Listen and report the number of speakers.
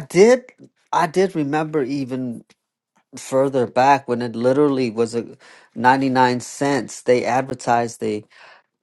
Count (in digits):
1